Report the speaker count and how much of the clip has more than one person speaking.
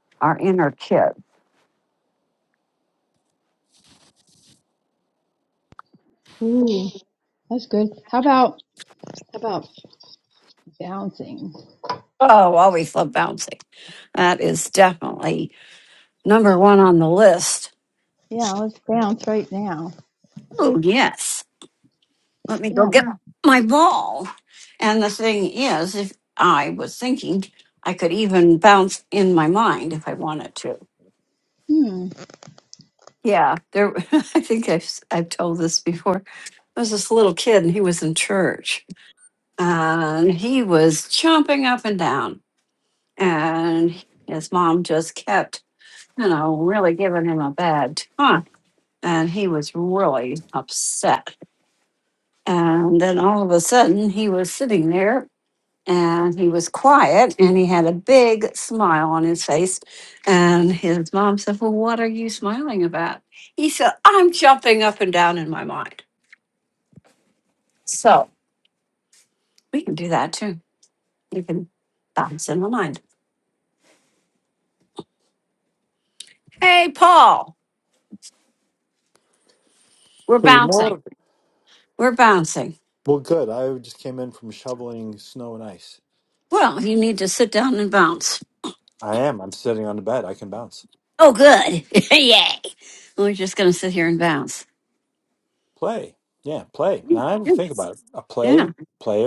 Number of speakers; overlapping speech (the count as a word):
three, about 1%